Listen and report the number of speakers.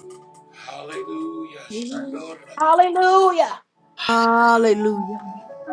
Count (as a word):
three